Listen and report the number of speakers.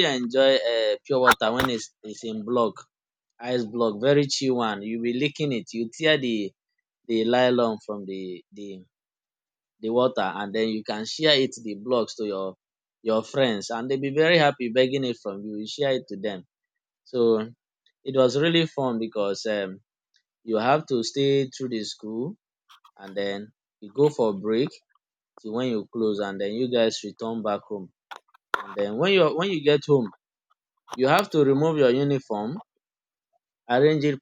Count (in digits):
1